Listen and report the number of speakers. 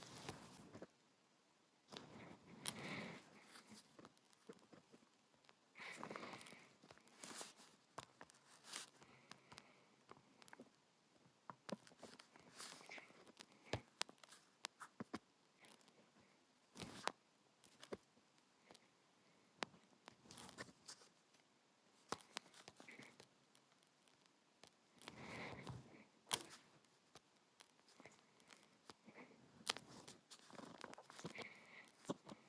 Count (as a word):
zero